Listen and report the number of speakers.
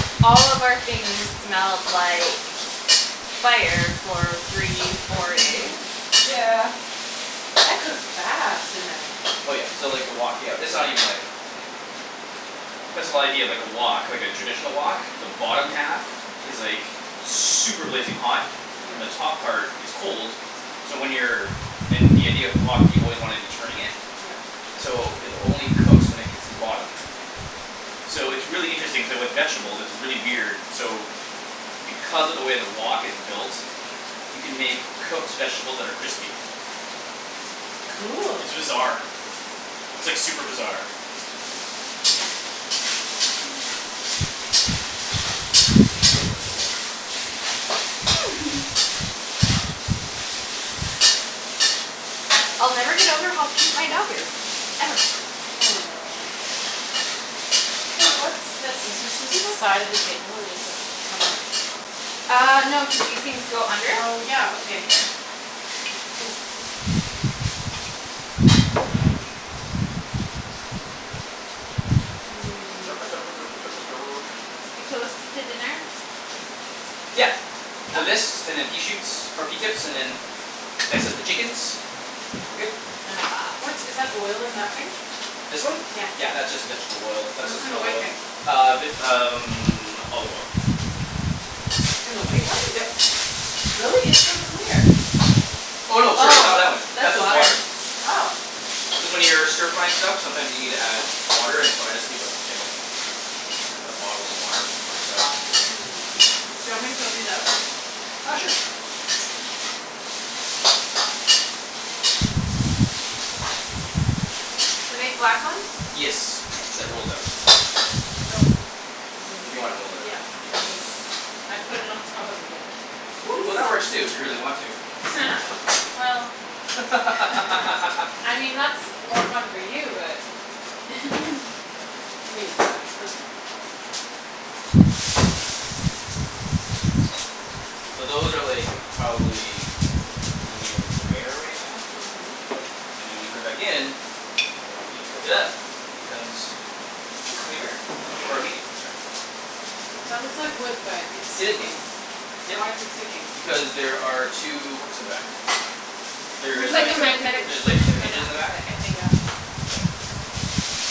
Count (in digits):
3